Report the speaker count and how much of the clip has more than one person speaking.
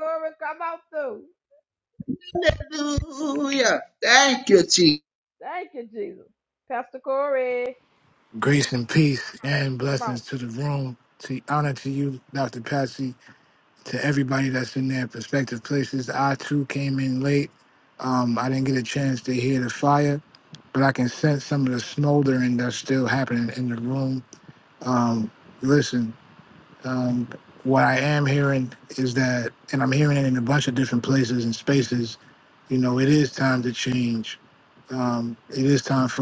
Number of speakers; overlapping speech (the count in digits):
3, about 1%